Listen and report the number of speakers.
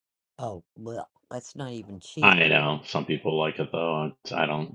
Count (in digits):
2